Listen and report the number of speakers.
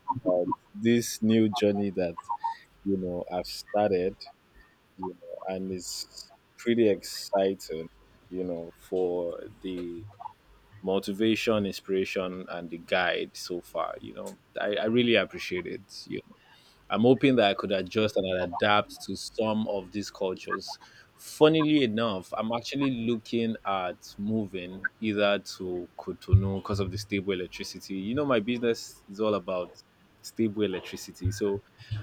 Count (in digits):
1